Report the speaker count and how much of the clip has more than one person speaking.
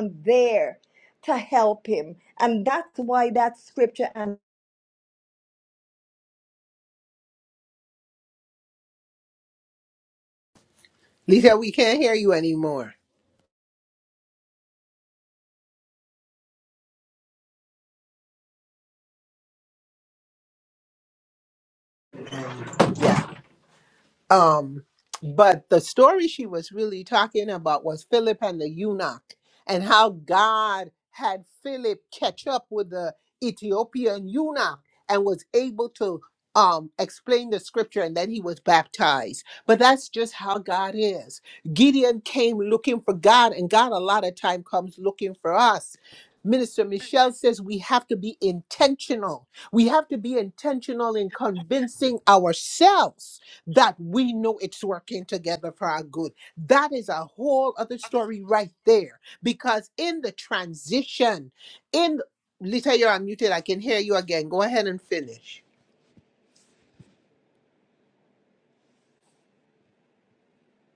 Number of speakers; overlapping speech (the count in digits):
2, no overlap